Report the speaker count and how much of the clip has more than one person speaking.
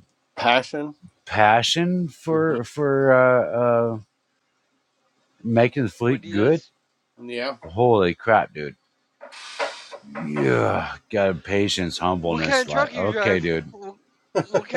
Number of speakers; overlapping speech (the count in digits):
3, about 15%